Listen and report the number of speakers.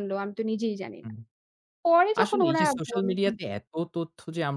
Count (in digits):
2